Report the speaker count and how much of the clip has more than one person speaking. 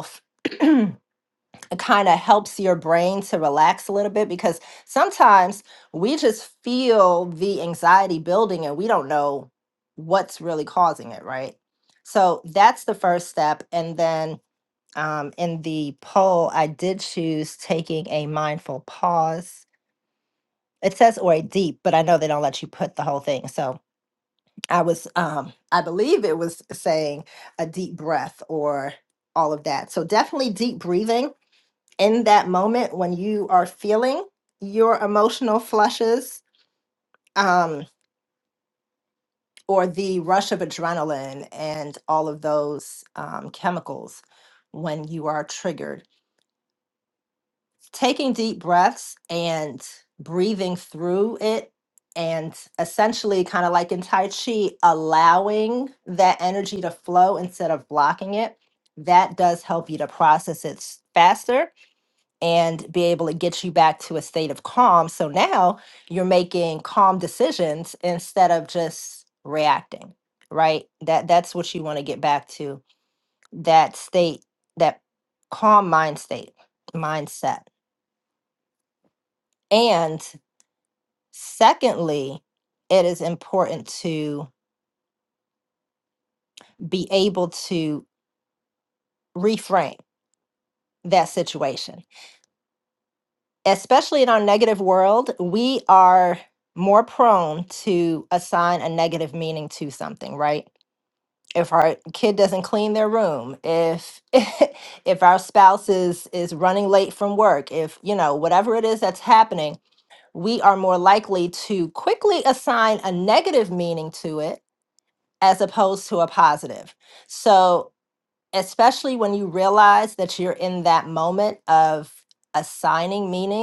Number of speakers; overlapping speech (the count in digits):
1, no overlap